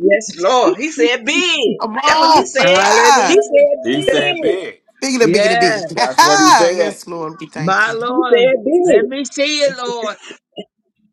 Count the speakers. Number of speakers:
4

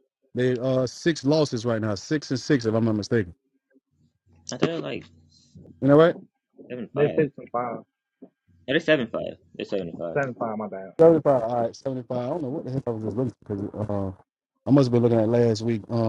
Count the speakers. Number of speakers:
3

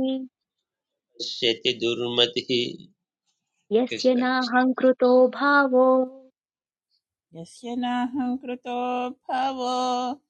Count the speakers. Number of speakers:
3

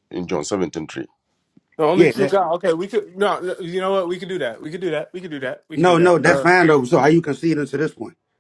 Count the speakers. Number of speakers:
3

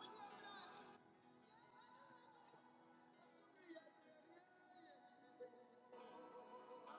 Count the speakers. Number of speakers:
0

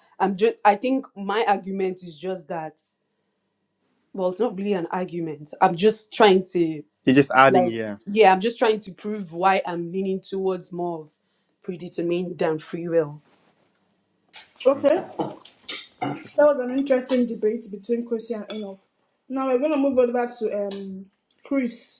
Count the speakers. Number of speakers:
3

